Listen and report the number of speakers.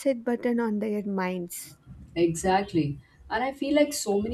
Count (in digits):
2